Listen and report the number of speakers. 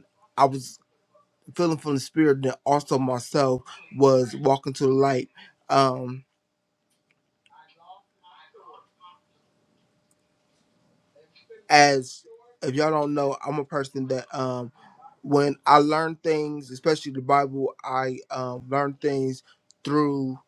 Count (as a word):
one